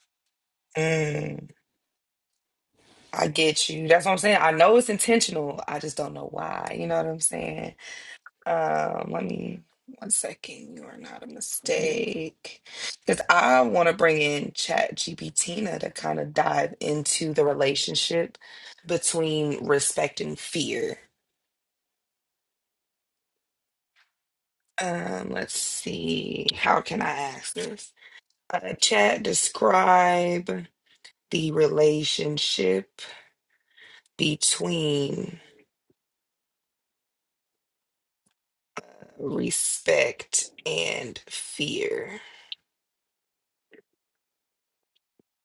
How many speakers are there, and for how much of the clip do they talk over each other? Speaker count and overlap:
one, no overlap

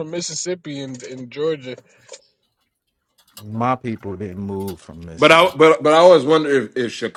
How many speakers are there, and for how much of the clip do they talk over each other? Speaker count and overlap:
three, about 4%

